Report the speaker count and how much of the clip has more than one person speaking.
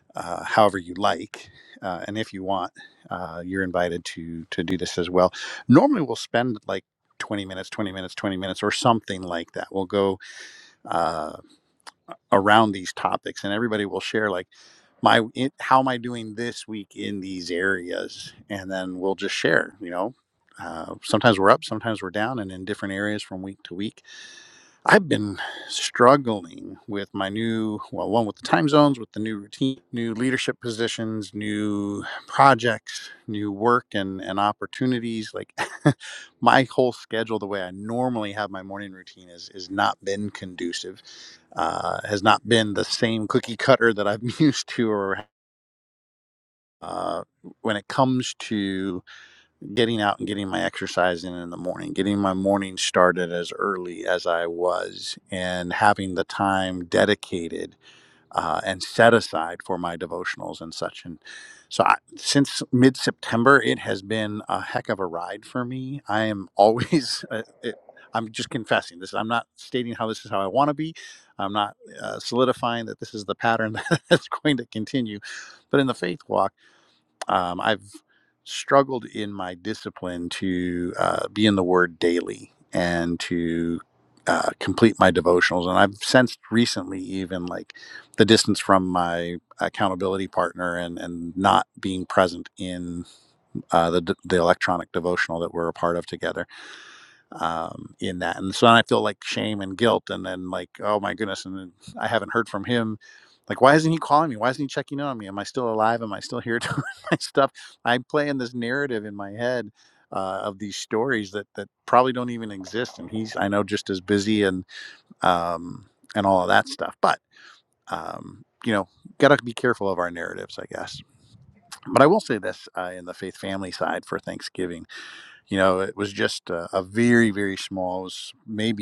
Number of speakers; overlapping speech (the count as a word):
one, no overlap